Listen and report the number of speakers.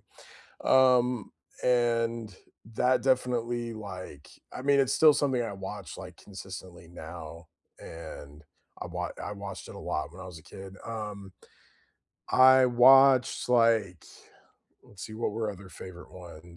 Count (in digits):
1